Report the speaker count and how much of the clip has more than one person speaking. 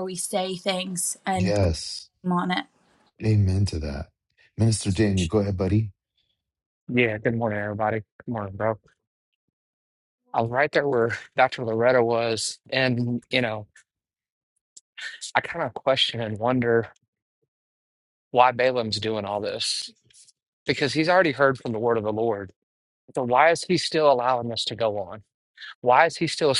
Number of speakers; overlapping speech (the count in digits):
3, about 1%